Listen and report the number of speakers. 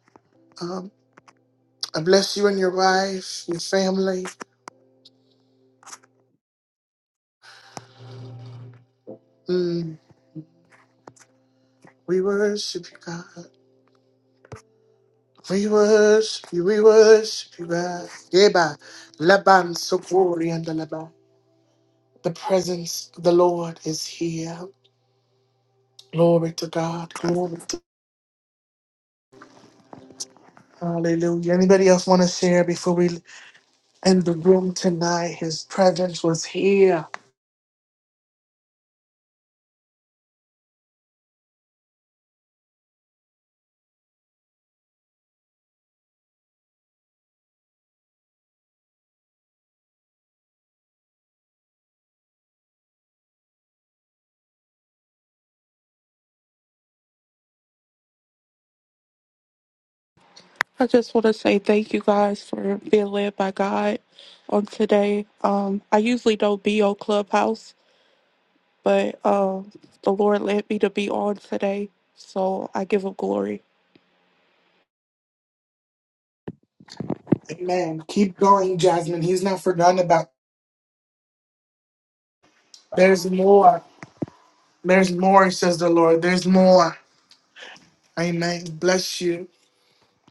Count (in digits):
2